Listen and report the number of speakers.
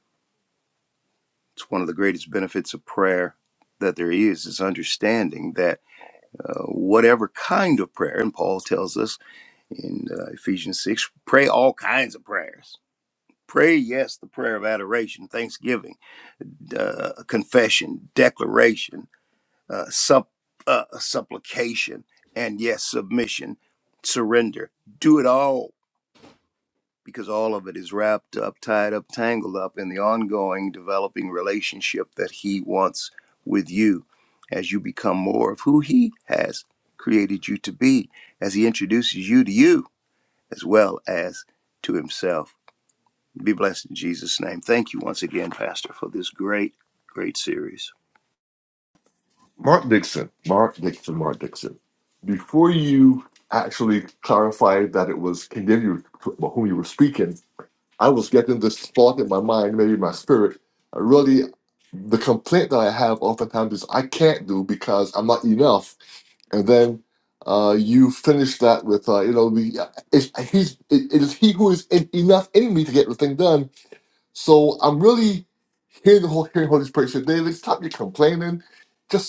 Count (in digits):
2